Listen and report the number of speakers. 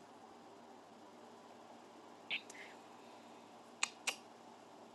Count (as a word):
zero